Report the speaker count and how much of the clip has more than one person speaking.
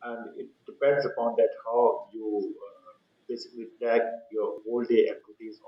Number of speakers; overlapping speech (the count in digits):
1, no overlap